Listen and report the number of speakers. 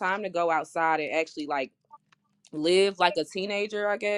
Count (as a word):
one